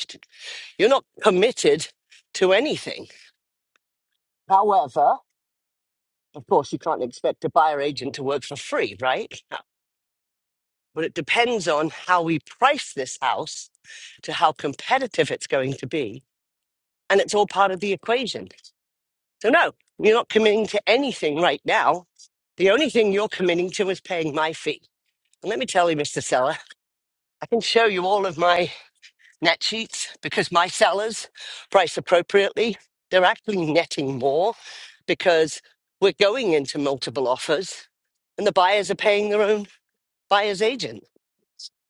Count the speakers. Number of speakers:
1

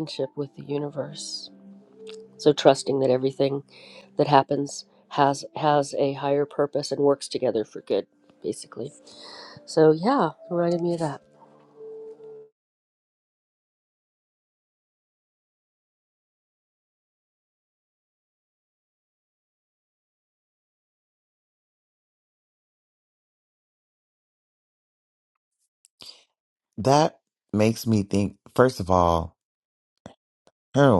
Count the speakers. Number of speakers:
2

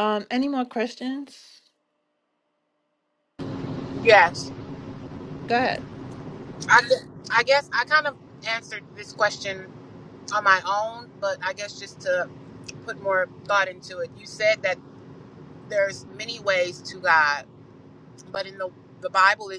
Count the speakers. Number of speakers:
2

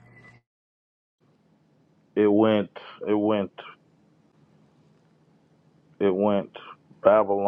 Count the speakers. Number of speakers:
1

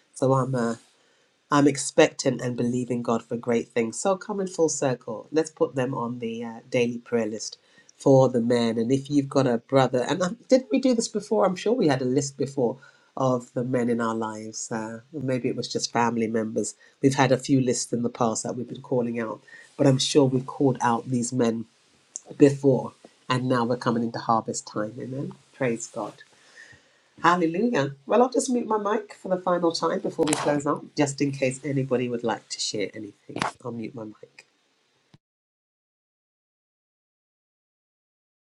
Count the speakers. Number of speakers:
1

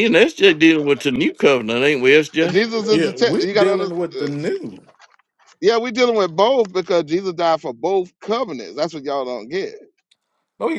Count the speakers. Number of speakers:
3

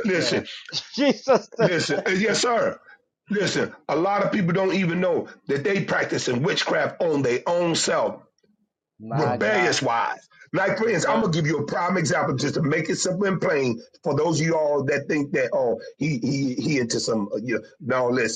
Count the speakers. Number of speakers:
2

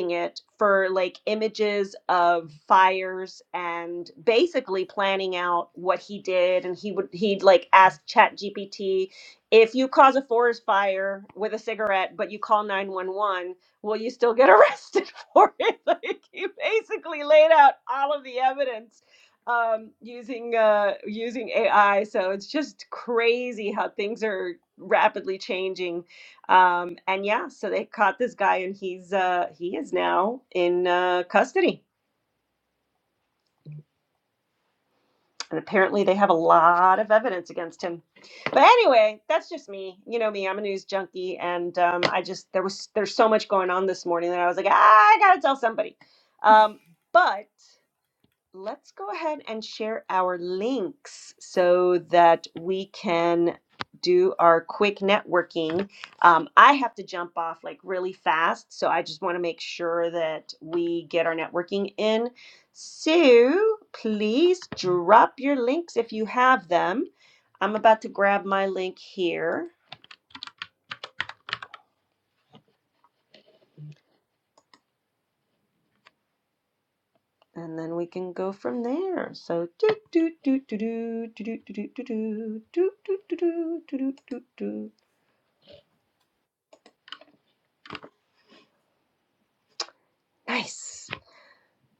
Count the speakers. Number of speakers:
1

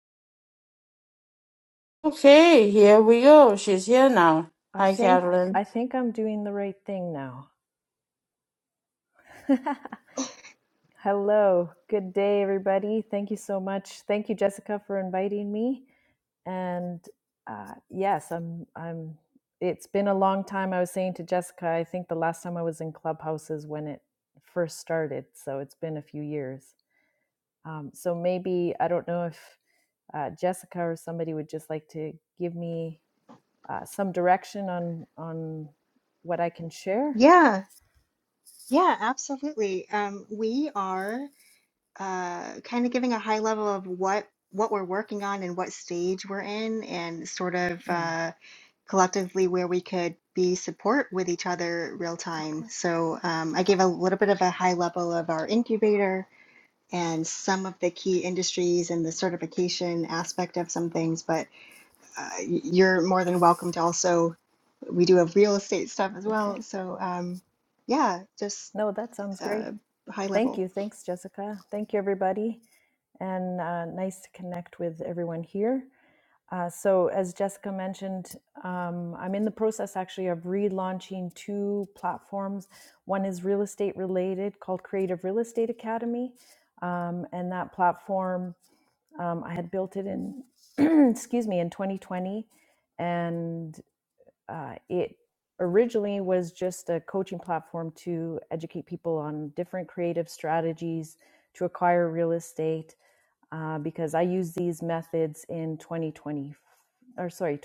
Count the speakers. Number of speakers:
3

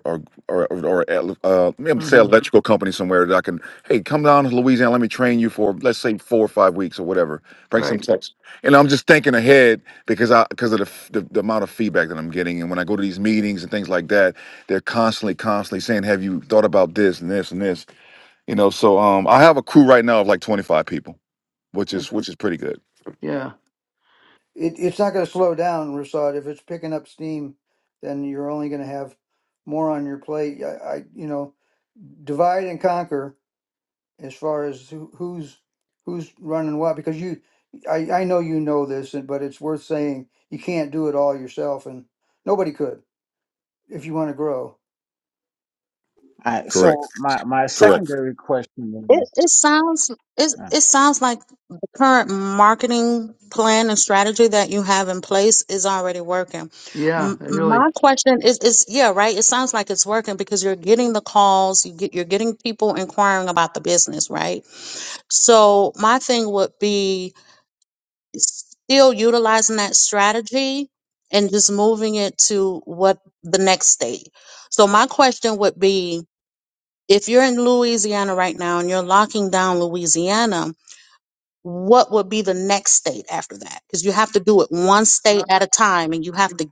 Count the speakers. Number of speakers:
4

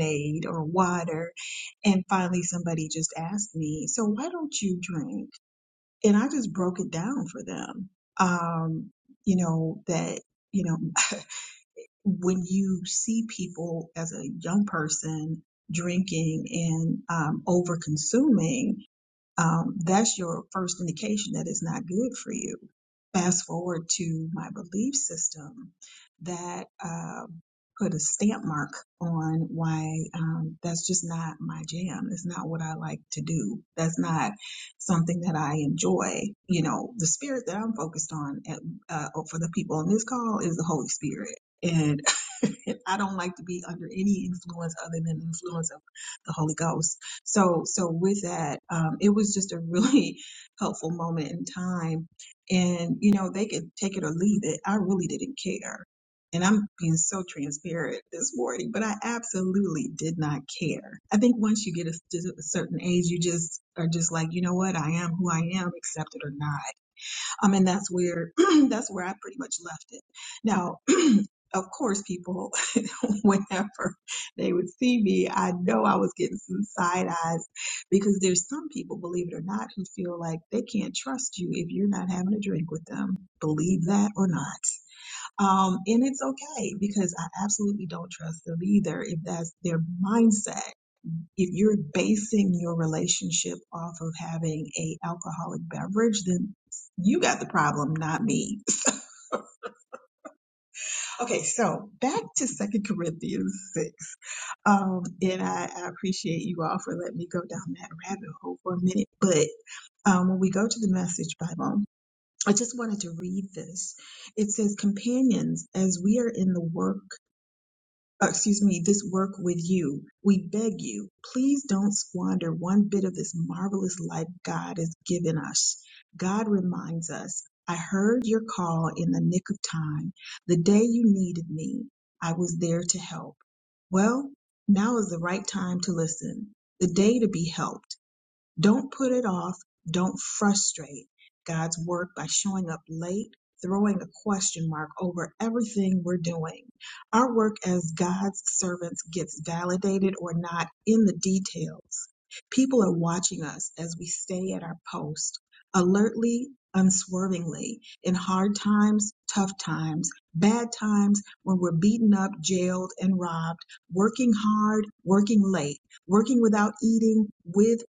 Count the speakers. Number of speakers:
1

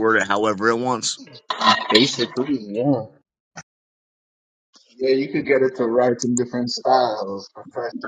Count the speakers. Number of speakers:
3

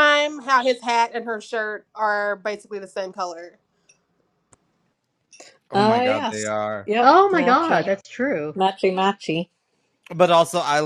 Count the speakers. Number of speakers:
4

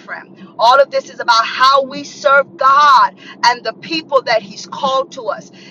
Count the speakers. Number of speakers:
1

